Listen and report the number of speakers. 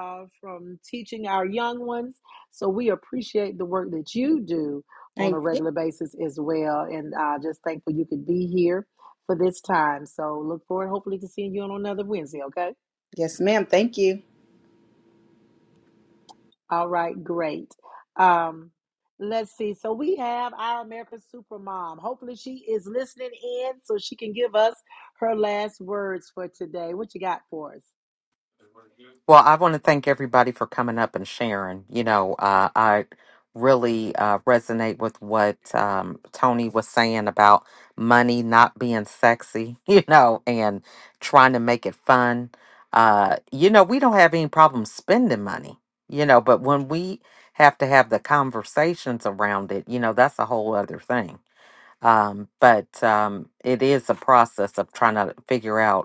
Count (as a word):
three